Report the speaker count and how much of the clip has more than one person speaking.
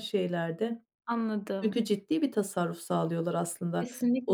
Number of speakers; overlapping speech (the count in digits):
2, about 6%